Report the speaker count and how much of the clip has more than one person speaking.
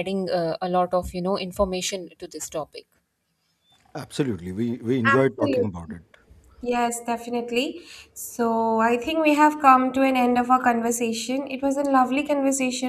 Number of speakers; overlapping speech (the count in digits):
3, about 7%